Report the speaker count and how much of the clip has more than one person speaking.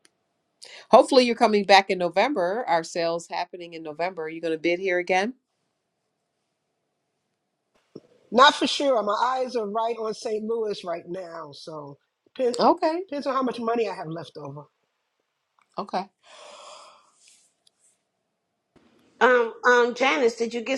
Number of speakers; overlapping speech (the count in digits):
3, under 1%